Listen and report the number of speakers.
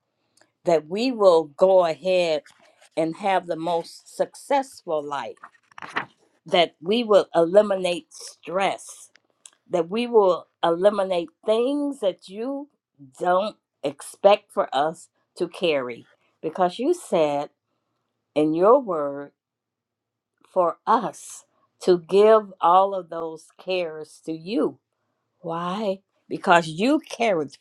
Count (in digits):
1